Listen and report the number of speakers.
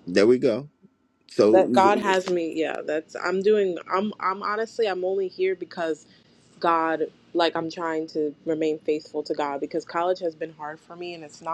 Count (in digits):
2